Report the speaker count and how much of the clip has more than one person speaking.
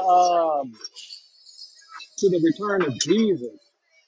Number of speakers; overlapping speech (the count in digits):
1, no overlap